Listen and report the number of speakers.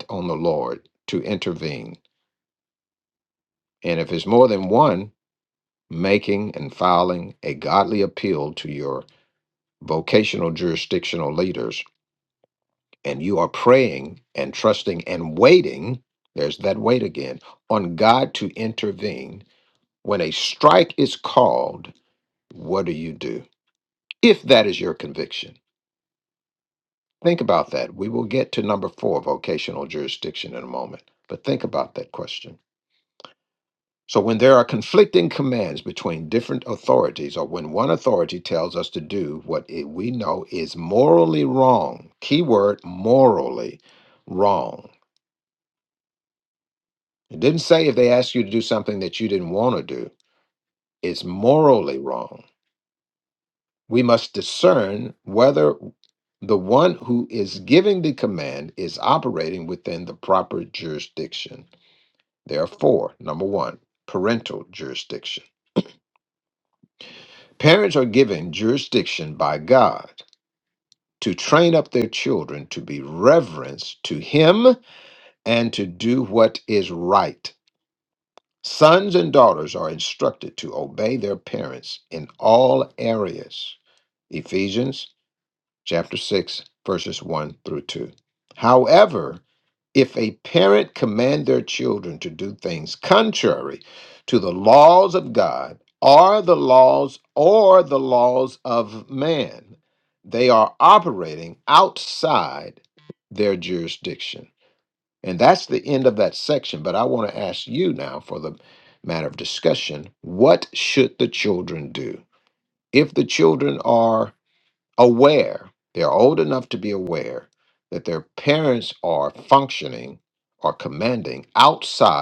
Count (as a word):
one